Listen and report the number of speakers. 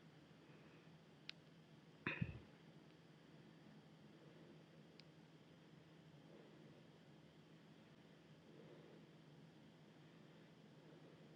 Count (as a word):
zero